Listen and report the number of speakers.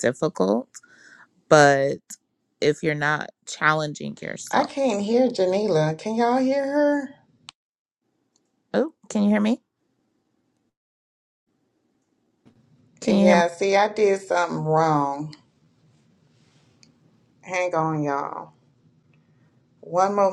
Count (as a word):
two